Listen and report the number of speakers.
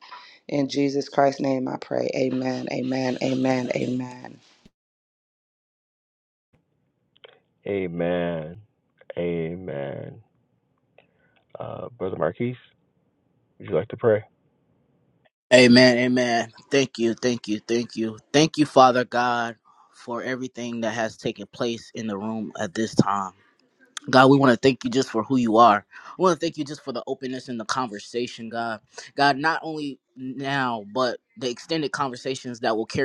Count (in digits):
3